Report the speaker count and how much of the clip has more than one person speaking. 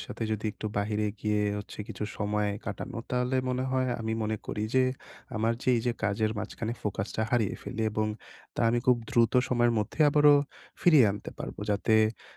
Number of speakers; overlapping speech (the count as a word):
one, no overlap